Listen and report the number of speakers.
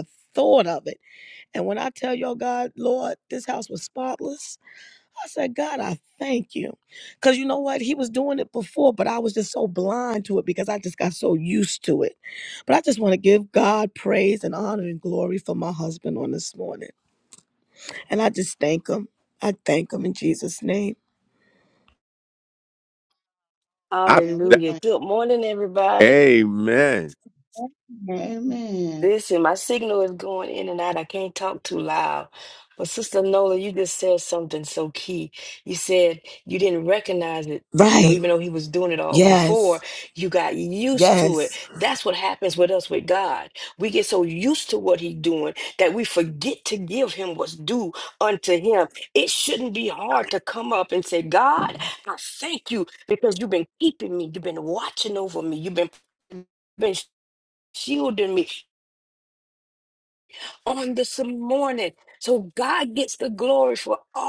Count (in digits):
4